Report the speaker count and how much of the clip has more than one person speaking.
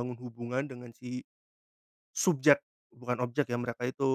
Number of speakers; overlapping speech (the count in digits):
1, no overlap